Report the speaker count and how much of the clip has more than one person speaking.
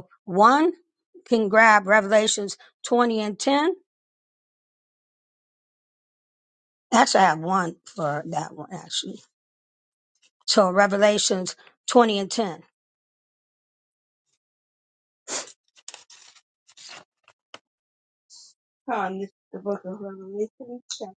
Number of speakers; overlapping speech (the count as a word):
two, no overlap